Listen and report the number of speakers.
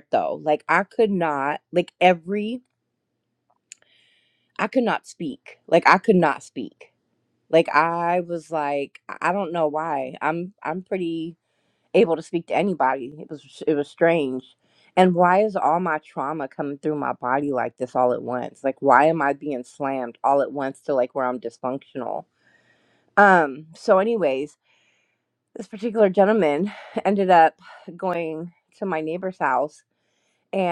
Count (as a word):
one